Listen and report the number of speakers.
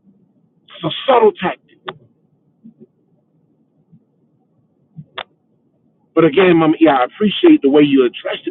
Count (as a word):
one